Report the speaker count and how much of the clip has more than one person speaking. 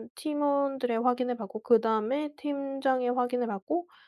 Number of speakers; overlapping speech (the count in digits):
1, no overlap